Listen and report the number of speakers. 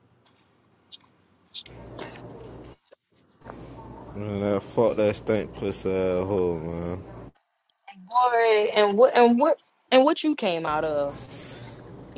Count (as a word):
two